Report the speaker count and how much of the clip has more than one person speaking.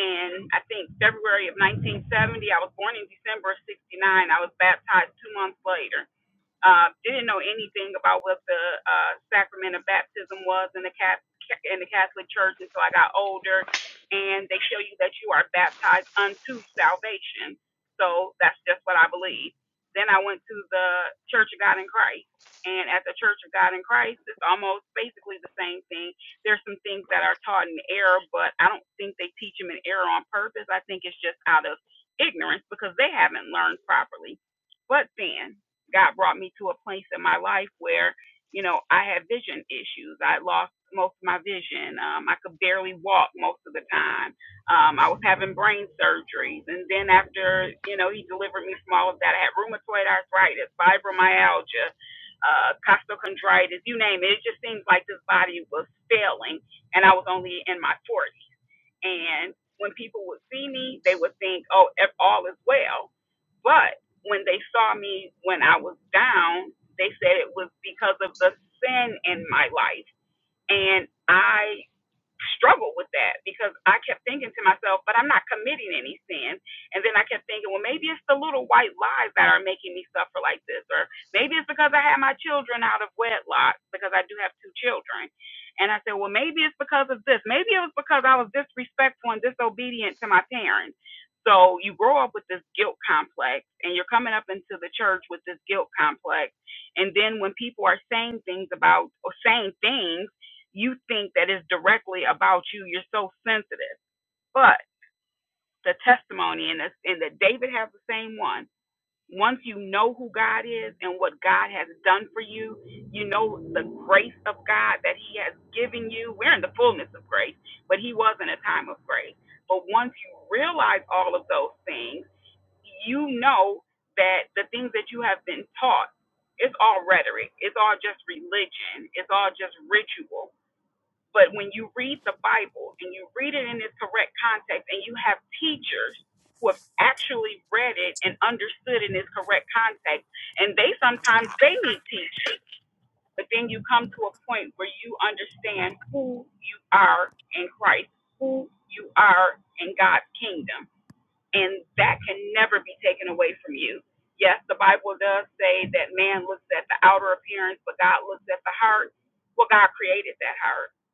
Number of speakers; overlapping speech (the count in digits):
1, no overlap